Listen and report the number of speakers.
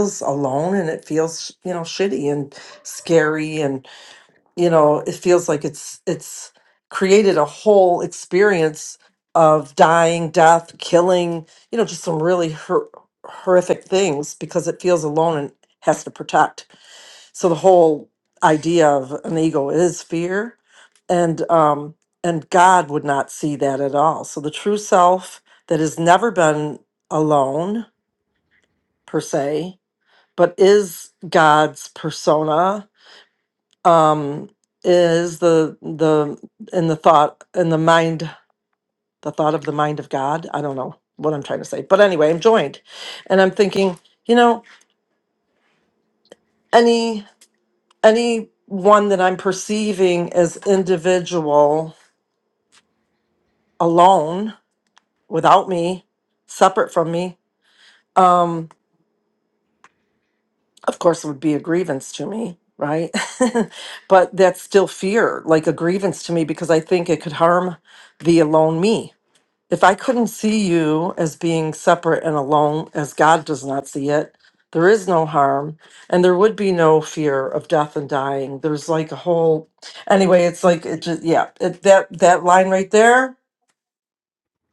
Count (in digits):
1